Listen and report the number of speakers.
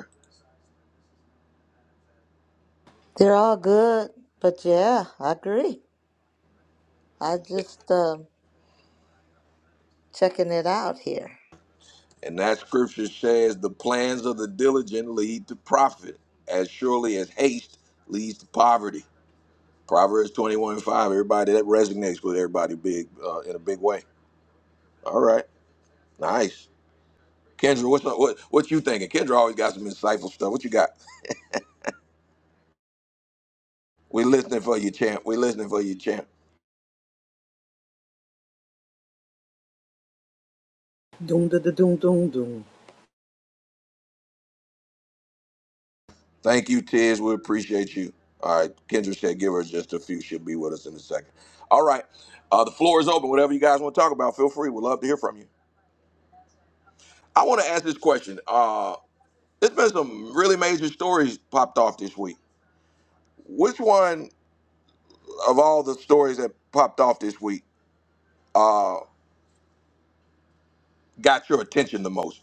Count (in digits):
3